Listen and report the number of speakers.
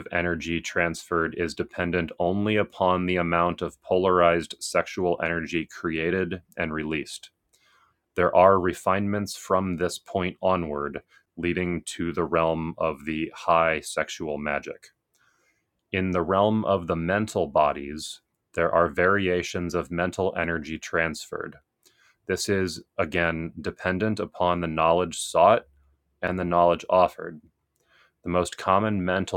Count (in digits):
1